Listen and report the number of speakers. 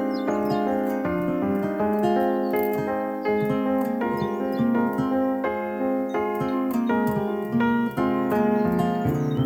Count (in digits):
0